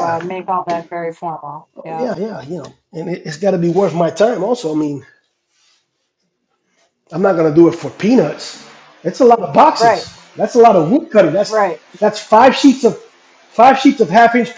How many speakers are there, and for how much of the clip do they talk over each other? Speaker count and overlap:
2, about 4%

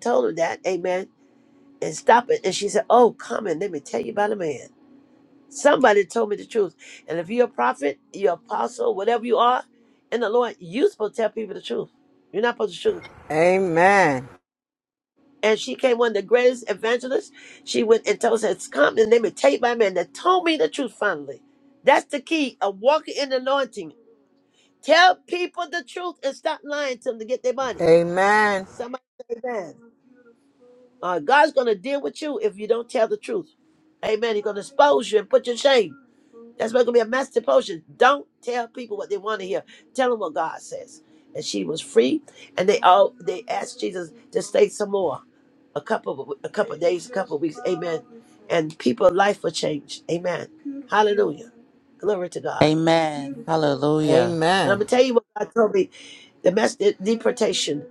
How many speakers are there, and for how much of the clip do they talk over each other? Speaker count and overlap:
3, under 1%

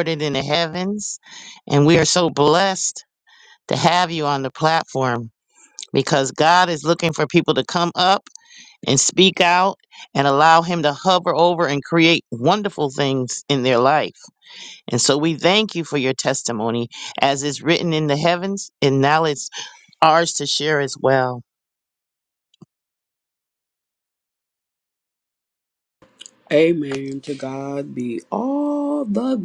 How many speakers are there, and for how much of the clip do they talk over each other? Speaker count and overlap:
2, no overlap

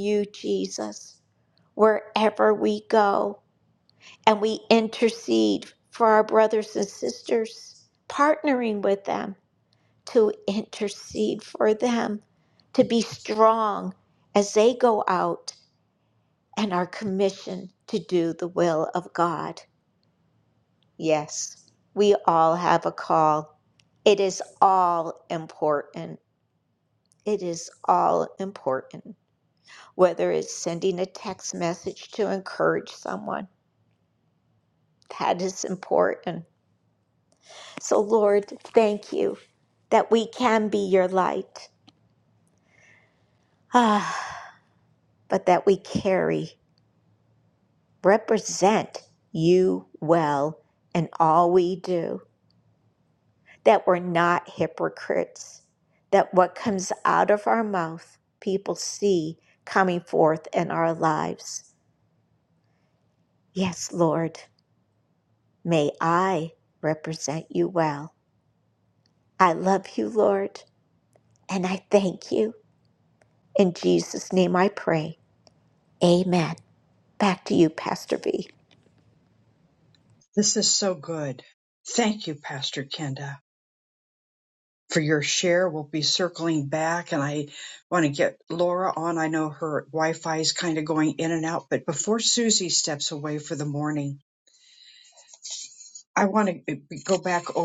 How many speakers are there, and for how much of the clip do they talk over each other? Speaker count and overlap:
2, no overlap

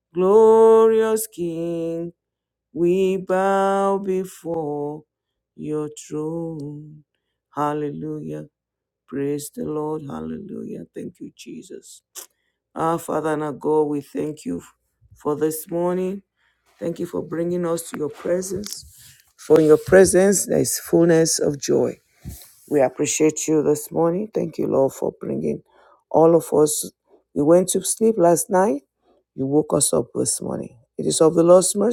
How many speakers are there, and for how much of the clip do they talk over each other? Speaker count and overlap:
1, no overlap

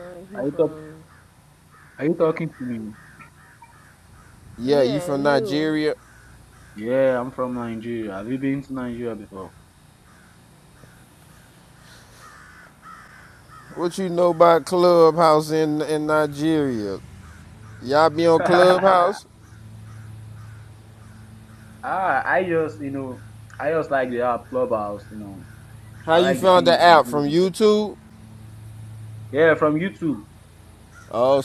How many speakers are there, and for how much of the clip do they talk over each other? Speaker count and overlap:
3, about 11%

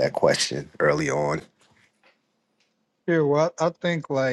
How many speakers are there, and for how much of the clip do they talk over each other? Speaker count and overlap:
2, no overlap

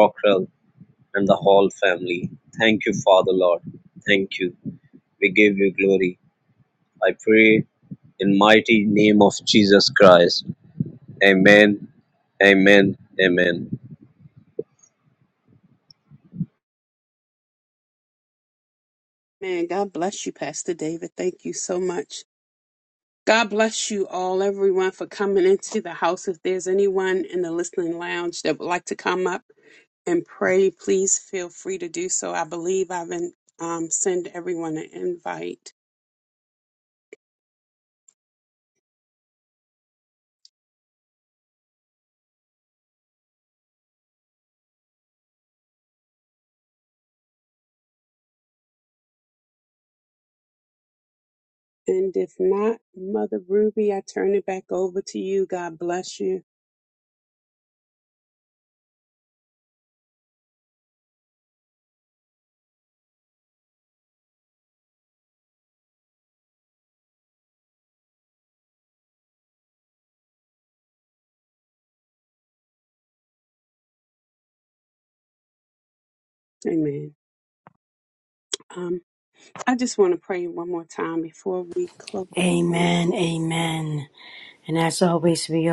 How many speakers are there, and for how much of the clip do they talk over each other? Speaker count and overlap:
3, under 1%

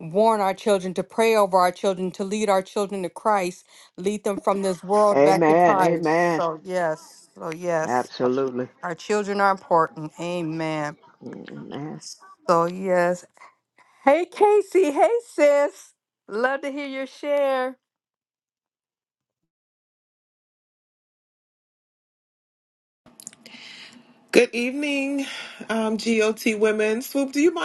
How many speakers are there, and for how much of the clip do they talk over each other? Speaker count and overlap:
3, about 4%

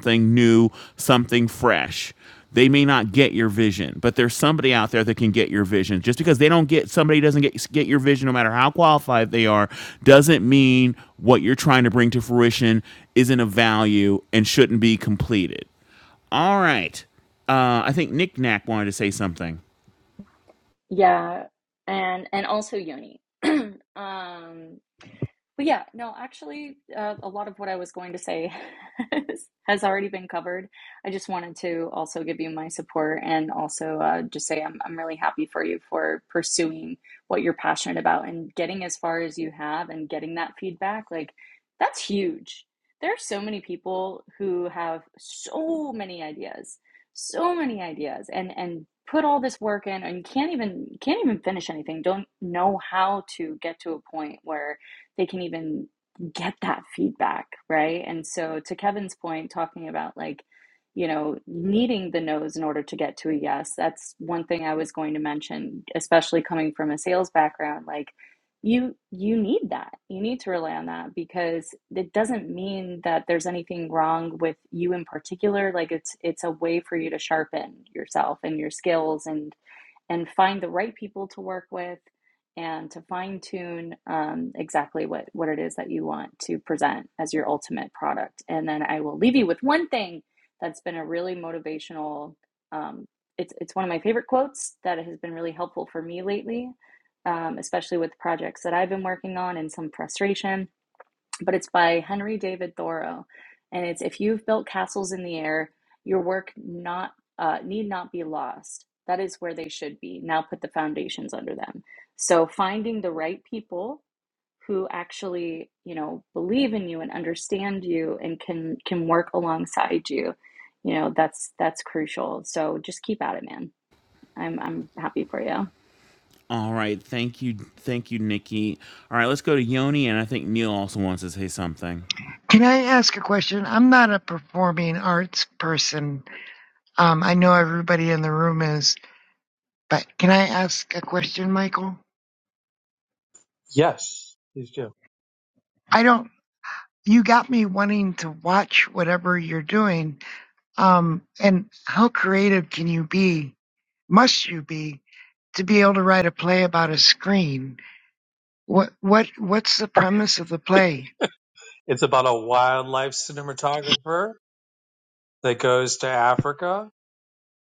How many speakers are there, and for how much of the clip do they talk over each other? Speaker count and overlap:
4, no overlap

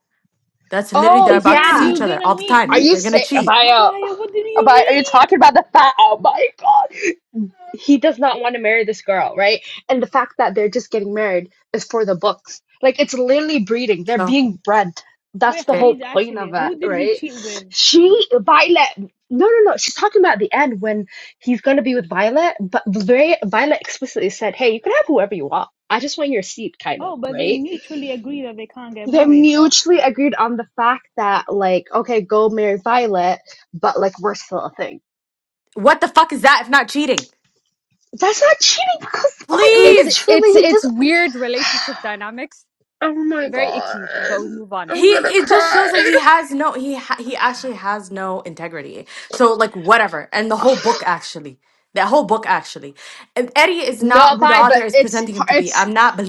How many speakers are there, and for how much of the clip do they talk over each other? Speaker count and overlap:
4, about 20%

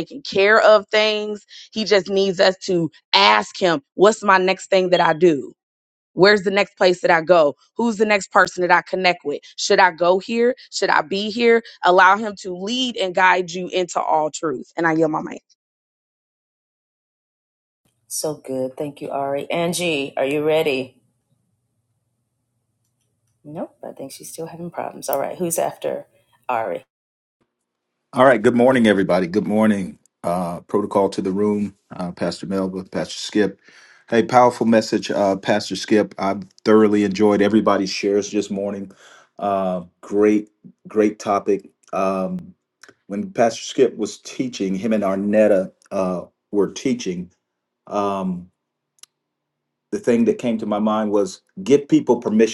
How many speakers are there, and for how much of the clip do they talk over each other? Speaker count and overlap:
3, no overlap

